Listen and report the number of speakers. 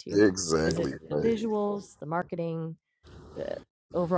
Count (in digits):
2